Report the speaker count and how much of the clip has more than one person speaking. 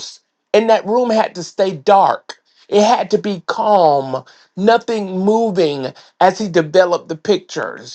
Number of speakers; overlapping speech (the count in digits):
1, no overlap